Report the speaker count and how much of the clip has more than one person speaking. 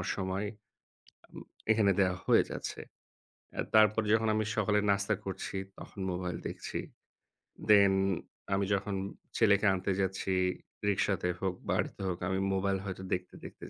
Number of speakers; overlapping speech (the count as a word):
one, no overlap